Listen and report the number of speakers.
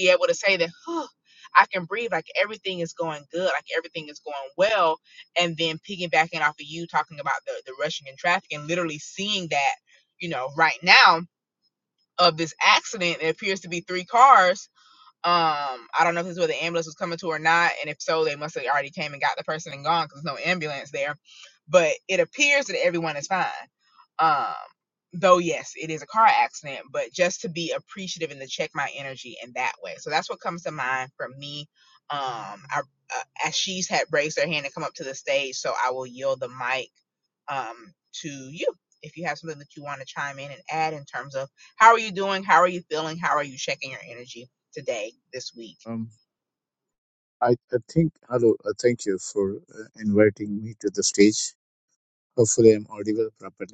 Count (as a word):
two